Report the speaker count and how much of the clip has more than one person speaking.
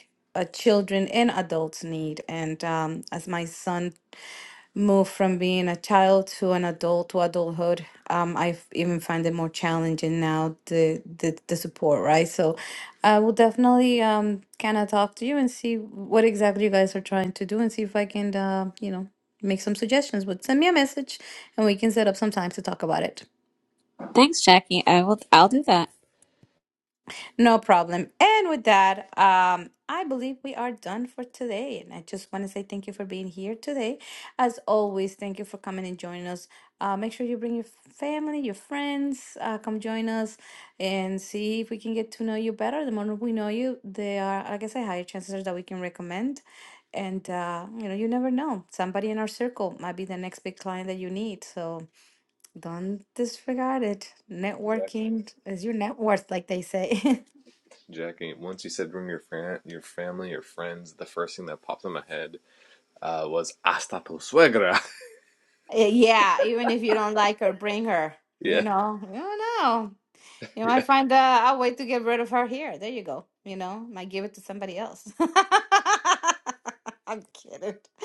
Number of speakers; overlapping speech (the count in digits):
3, about 1%